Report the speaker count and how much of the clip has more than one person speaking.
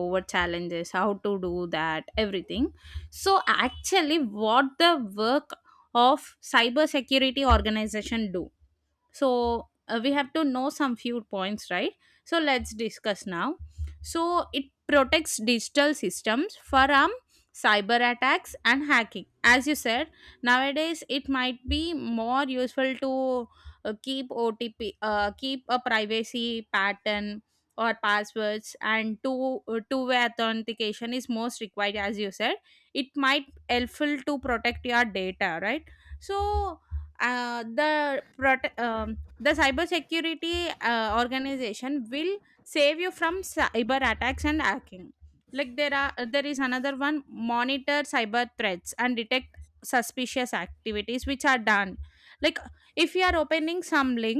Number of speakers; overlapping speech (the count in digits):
1, no overlap